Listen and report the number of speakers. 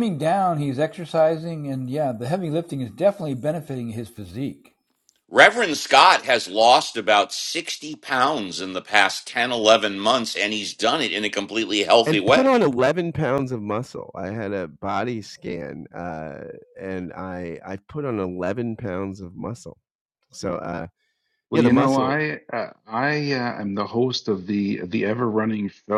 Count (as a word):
four